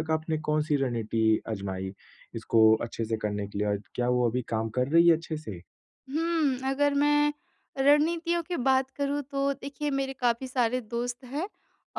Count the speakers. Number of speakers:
two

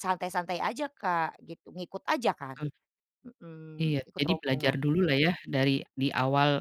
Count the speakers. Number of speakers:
two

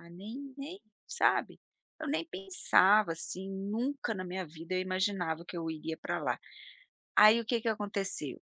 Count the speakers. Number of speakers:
one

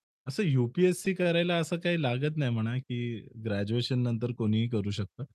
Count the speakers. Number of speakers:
one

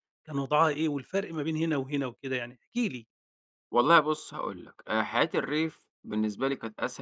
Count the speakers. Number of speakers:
two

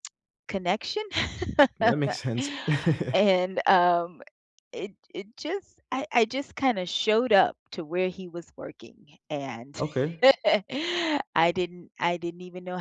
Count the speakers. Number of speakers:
two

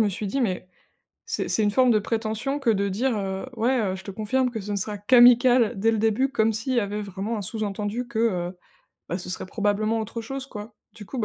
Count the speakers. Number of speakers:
one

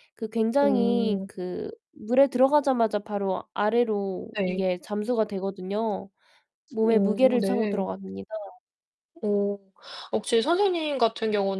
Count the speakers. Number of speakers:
two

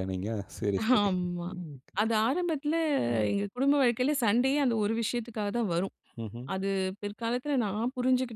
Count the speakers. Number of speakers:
two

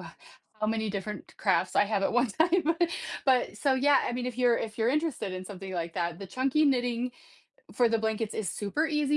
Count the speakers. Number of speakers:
one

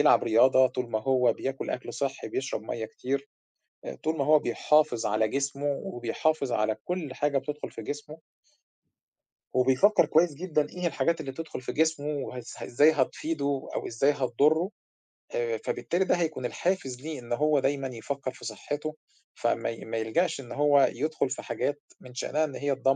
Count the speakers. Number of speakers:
one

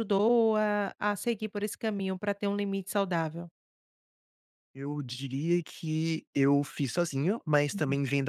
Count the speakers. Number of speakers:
two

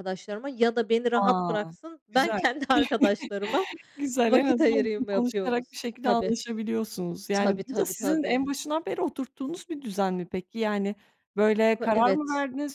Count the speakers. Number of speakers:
two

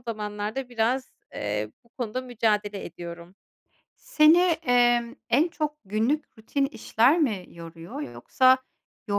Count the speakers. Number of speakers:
two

